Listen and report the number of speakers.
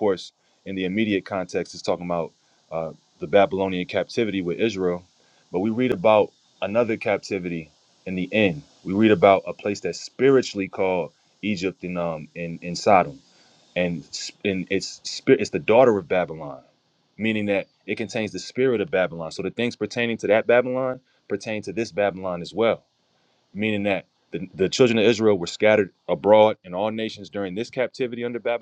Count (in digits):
1